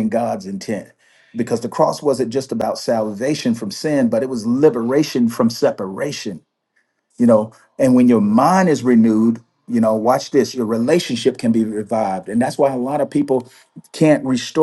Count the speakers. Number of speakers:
one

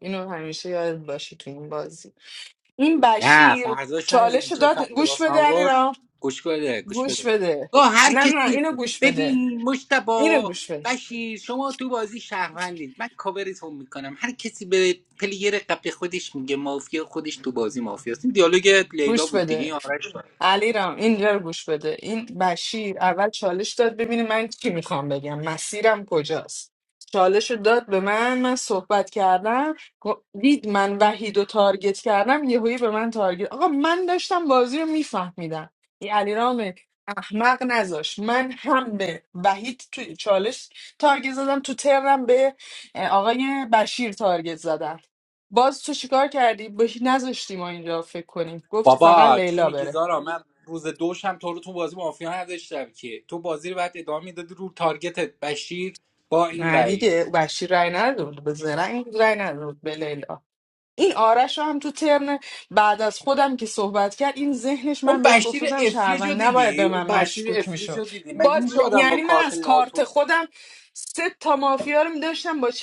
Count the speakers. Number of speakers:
two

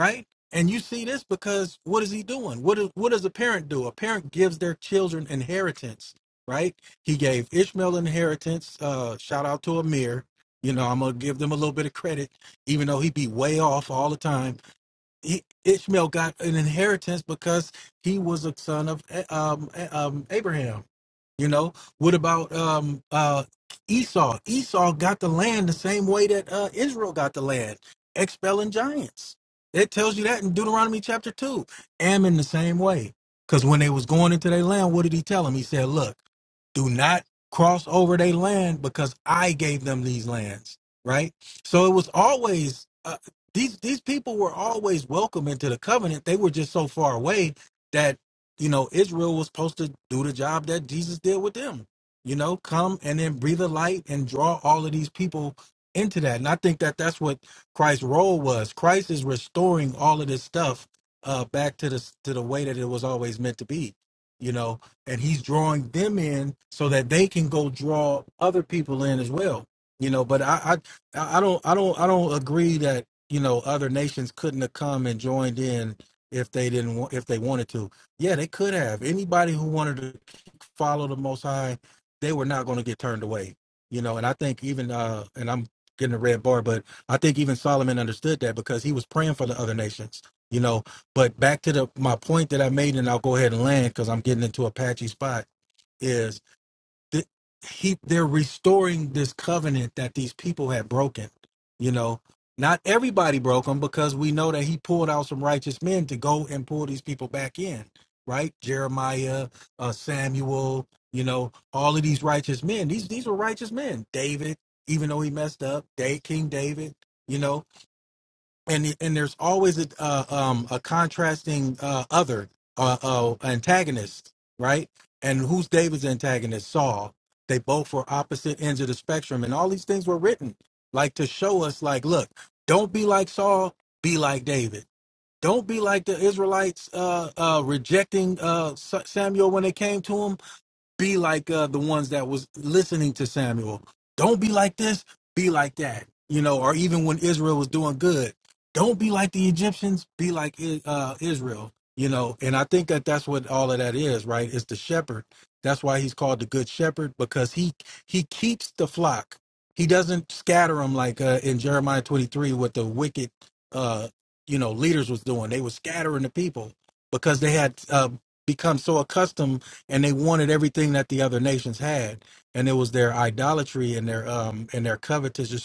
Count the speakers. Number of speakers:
one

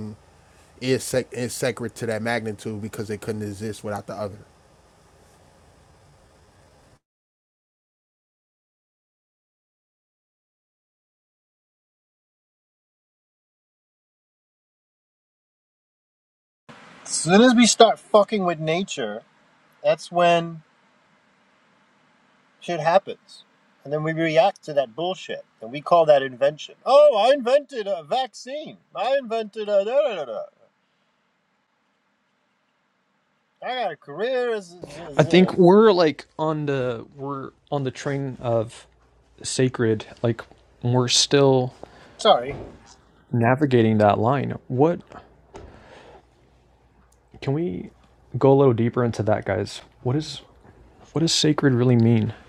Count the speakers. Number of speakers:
three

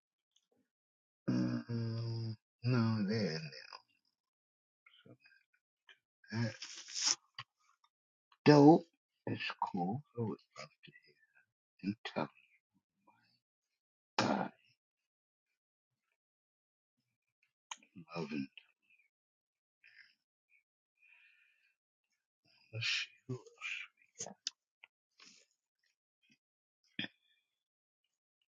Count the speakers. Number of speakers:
one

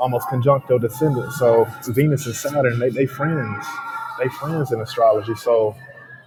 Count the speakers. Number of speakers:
one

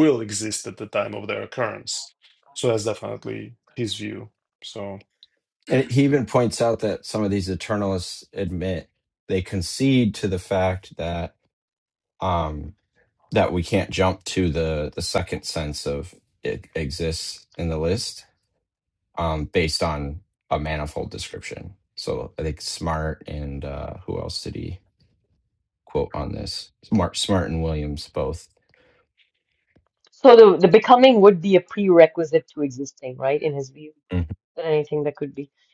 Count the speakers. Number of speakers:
three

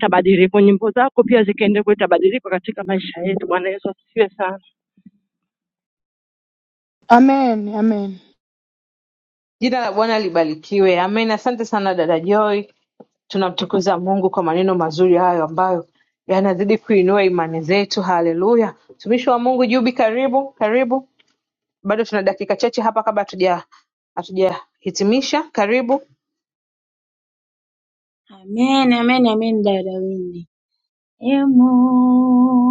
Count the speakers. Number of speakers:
four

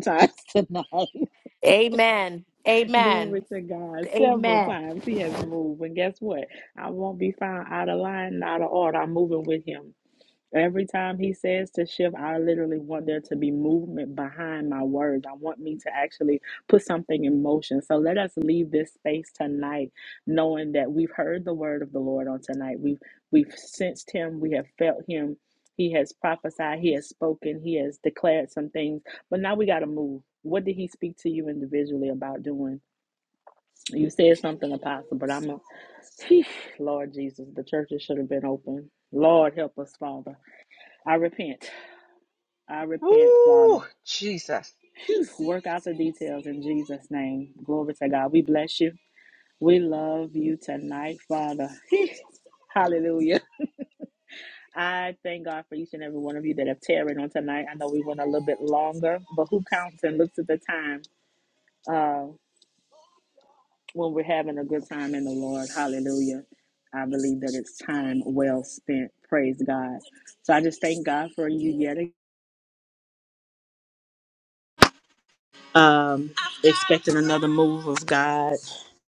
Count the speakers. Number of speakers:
three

